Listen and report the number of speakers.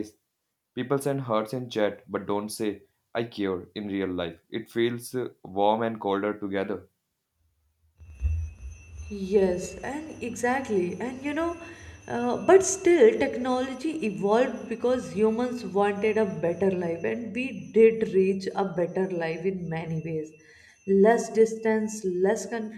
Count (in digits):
2